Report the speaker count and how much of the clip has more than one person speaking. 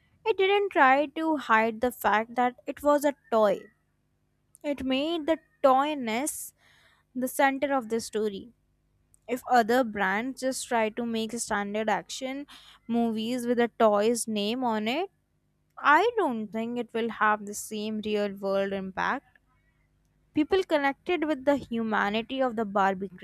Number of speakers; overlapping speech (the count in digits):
1, no overlap